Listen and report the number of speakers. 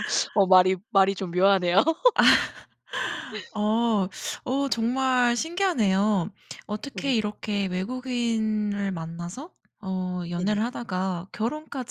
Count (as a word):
two